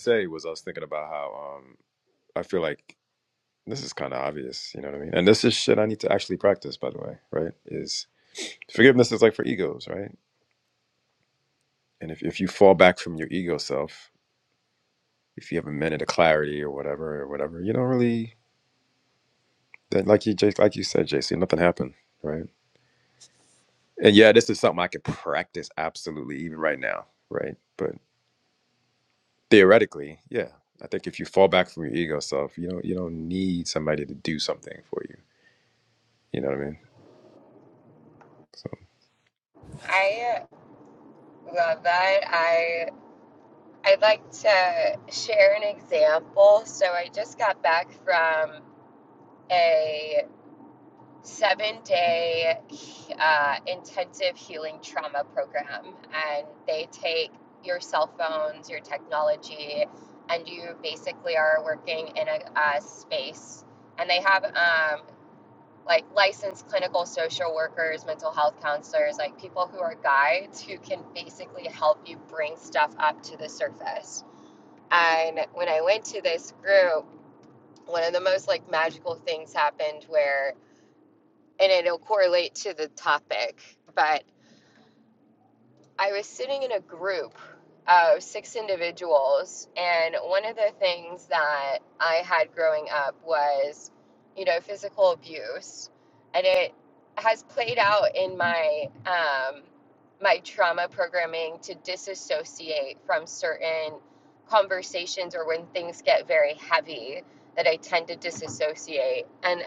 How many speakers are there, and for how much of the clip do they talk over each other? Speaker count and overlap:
two, no overlap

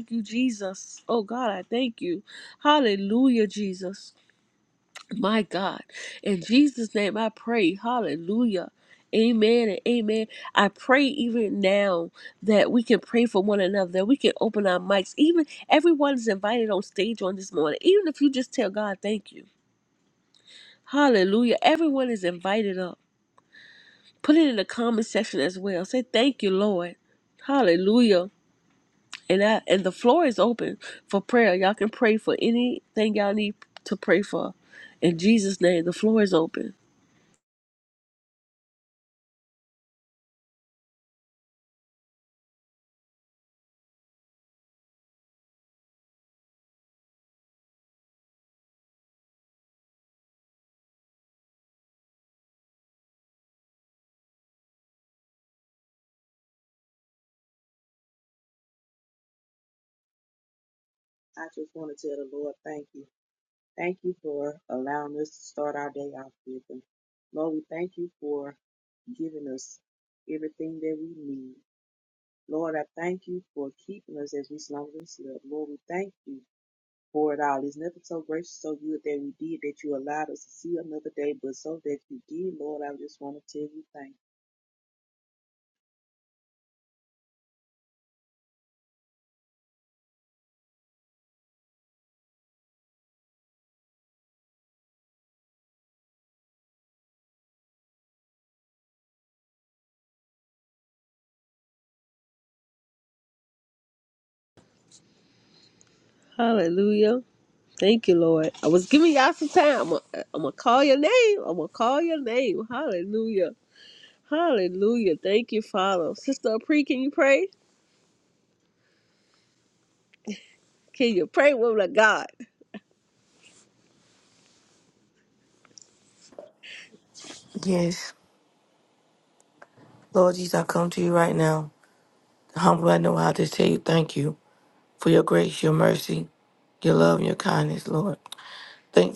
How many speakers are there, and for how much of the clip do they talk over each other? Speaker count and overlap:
three, no overlap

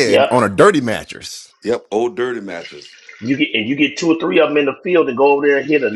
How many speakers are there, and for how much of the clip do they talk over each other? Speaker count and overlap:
three, about 7%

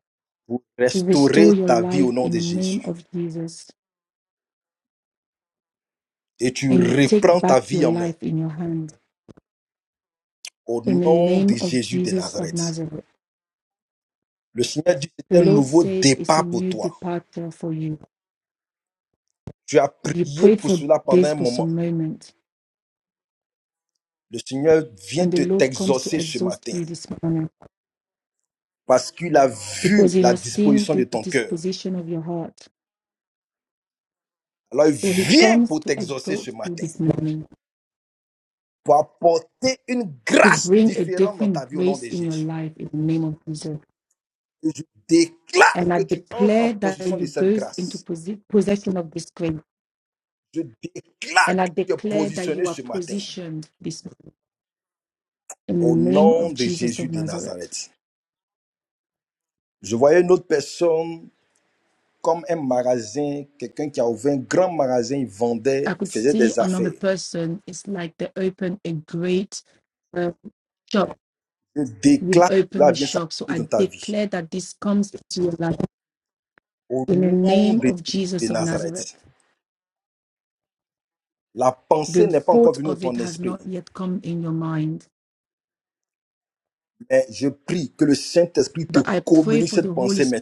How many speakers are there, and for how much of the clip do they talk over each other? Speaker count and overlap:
two, about 32%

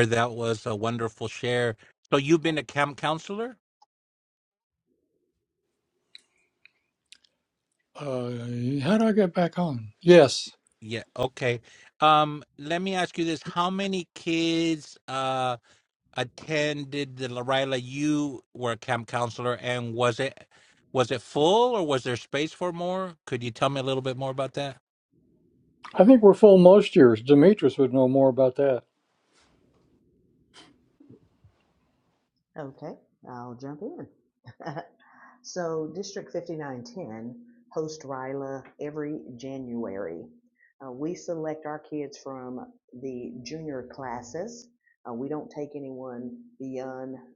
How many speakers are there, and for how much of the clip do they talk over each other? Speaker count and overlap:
three, no overlap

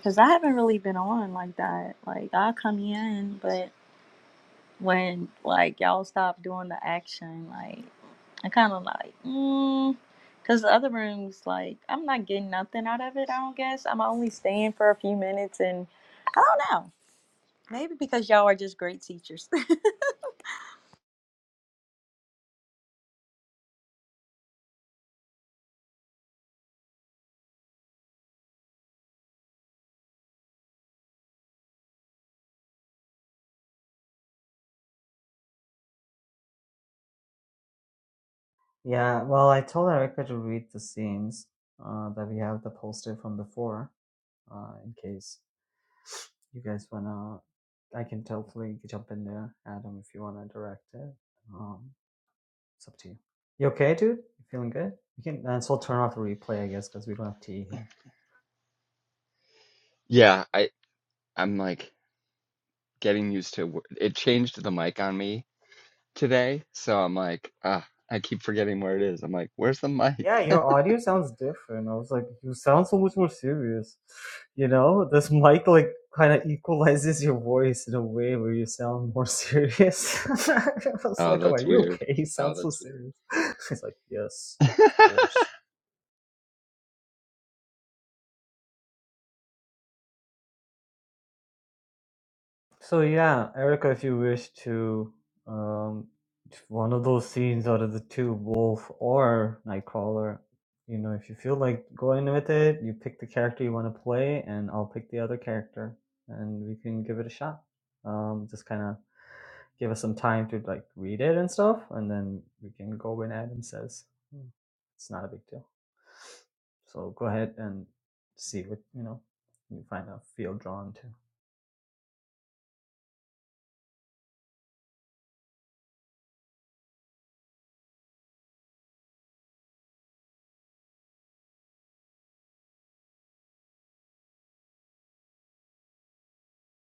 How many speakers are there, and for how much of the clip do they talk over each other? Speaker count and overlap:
three, about 1%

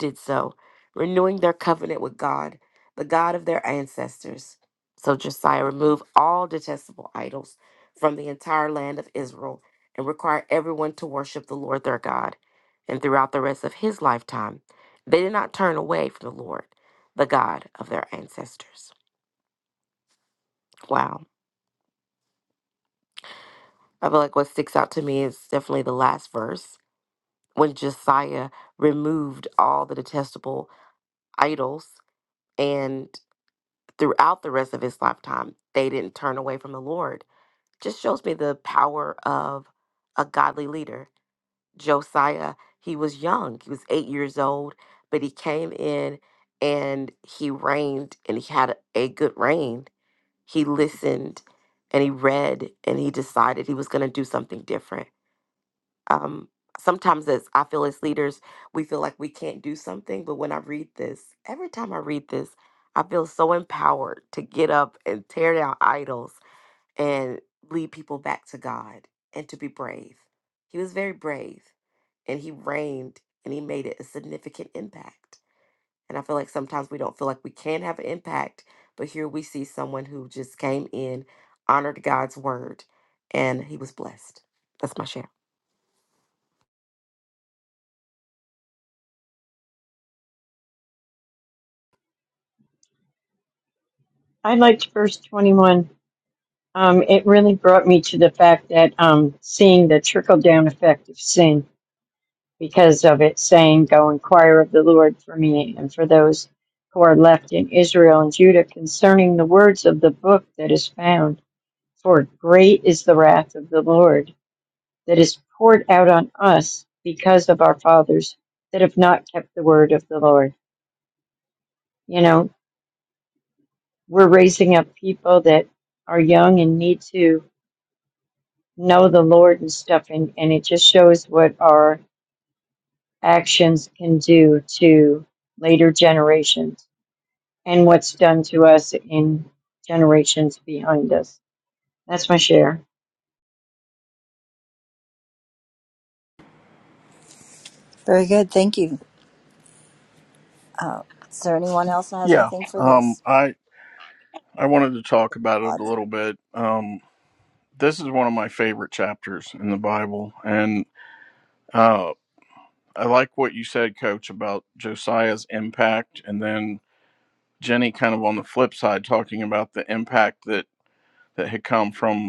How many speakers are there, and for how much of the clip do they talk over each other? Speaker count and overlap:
four, about 1%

